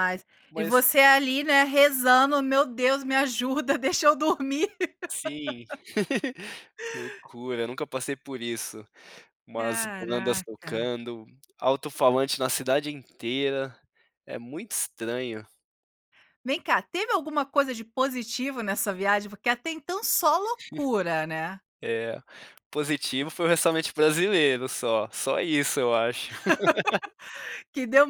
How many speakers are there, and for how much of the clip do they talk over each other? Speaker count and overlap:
2, about 4%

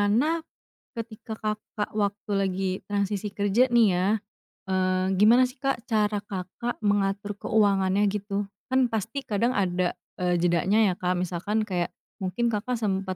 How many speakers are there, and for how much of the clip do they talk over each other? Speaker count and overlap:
1, no overlap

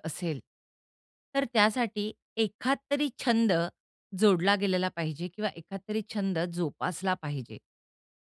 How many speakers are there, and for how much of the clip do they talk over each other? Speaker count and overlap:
1, no overlap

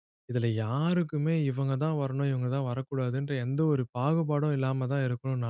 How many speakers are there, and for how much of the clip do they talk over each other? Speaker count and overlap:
1, no overlap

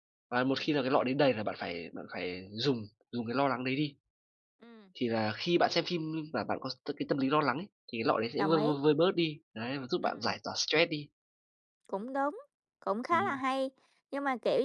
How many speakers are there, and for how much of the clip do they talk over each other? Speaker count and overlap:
2, about 5%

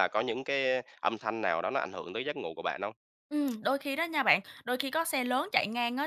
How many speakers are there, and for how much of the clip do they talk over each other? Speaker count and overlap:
2, no overlap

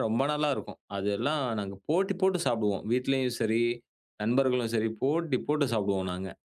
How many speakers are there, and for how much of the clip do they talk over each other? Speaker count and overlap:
1, no overlap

